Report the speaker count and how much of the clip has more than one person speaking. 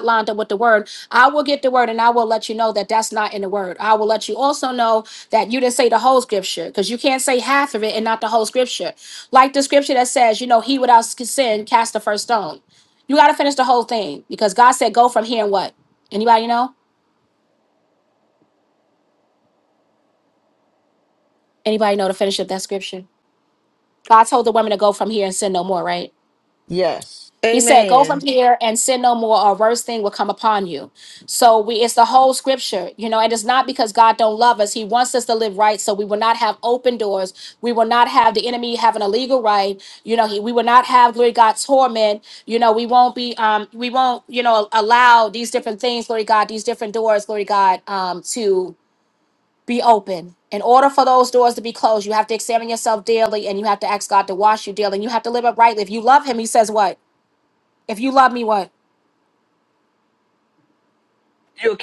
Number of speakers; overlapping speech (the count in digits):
2, about 1%